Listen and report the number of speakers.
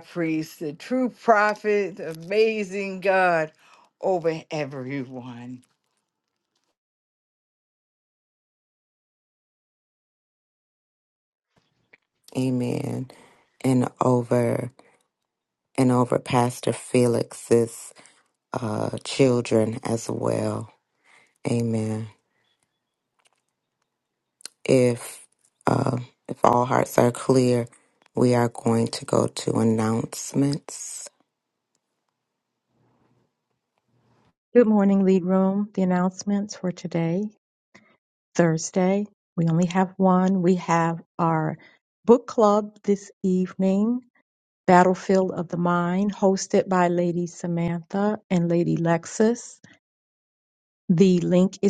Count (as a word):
three